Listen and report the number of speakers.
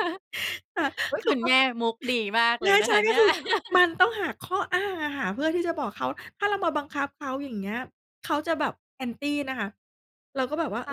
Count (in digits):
2